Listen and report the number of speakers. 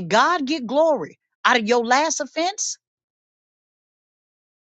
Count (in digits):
1